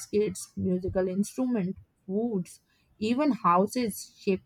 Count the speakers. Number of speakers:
1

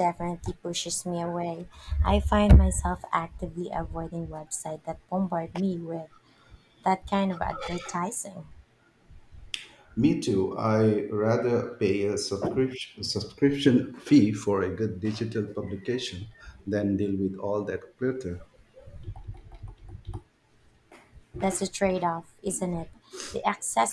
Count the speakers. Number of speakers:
2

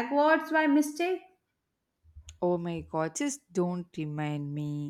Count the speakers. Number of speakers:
2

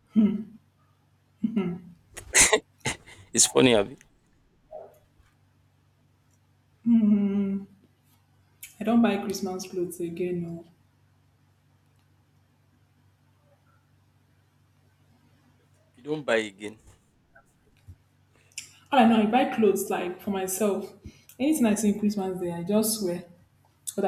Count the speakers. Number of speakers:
2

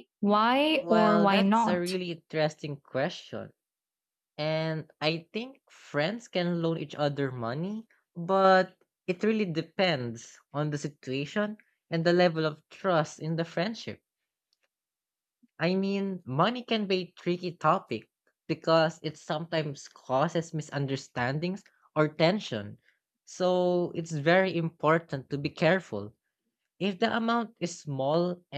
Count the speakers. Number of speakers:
2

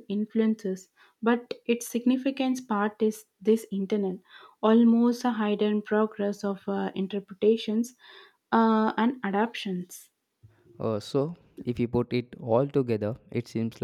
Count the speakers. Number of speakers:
2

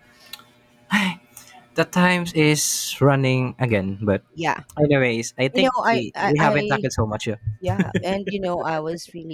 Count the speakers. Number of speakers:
2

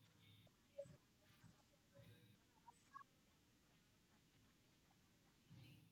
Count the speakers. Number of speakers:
0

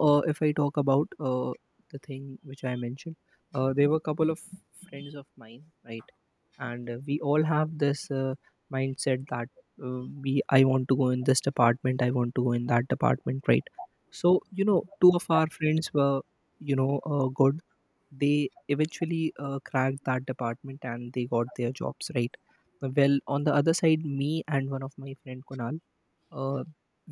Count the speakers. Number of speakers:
1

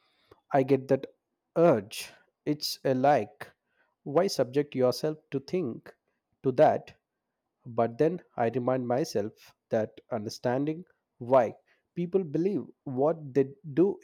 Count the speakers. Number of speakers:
1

